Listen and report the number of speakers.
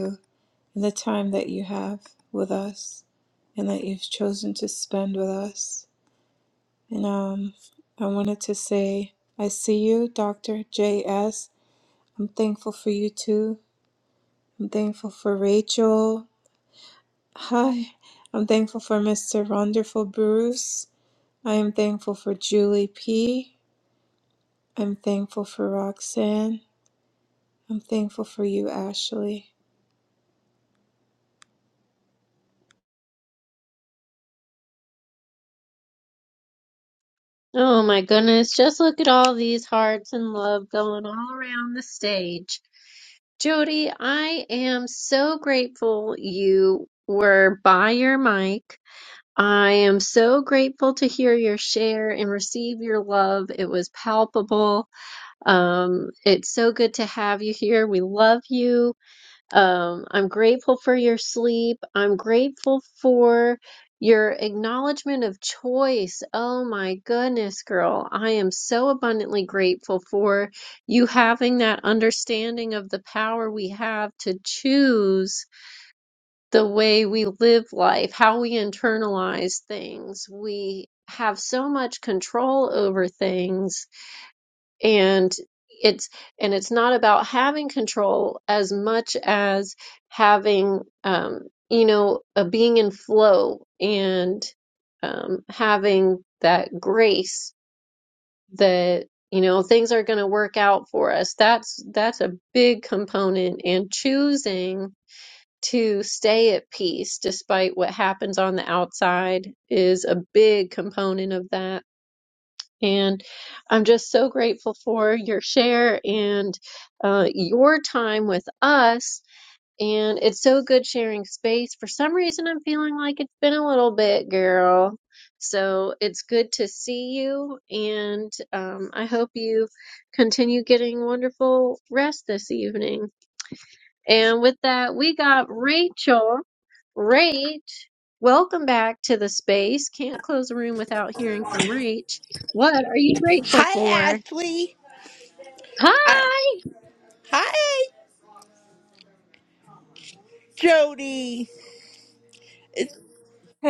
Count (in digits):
3